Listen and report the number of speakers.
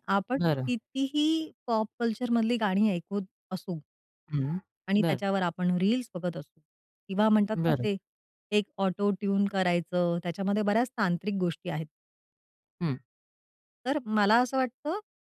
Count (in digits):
2